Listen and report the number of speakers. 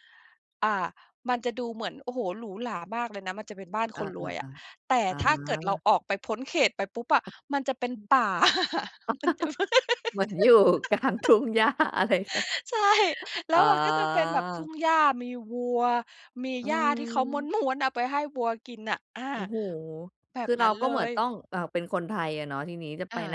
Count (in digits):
2